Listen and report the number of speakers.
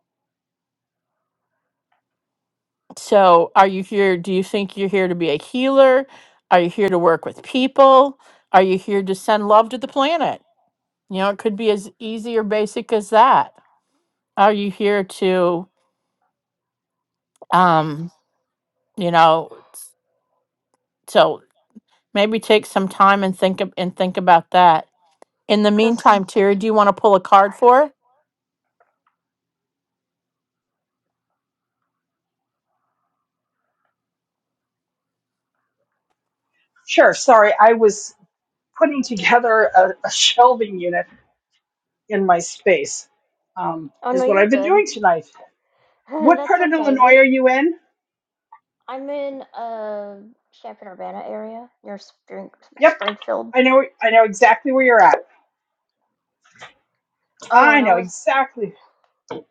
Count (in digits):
3